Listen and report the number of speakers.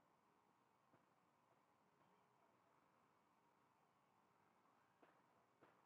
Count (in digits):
0